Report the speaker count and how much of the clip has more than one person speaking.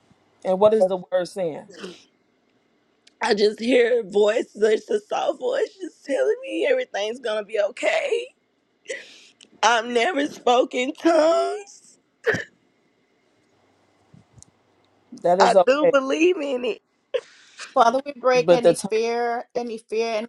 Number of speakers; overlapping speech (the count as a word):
three, about 5%